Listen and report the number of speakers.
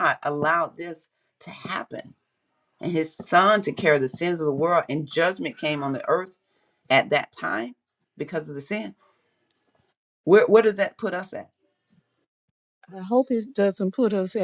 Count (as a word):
two